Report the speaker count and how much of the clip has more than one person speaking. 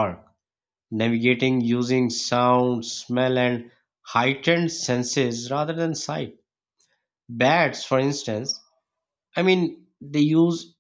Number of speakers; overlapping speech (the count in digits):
1, no overlap